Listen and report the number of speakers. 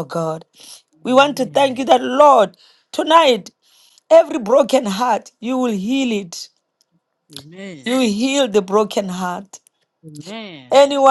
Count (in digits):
2